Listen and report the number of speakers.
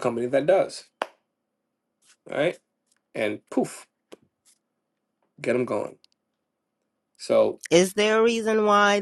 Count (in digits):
2